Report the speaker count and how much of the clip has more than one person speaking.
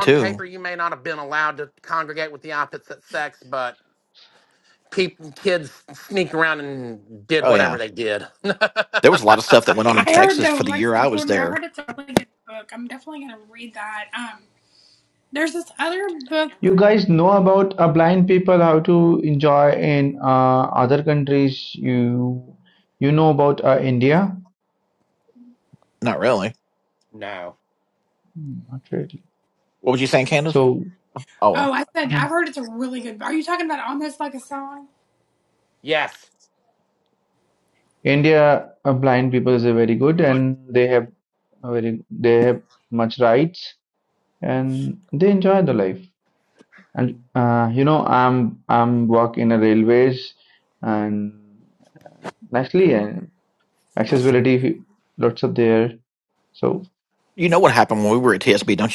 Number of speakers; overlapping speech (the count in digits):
4, about 5%